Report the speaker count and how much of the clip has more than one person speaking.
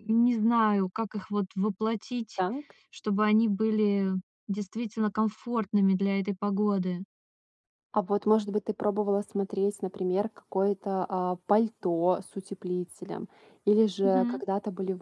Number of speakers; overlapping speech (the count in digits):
2, about 3%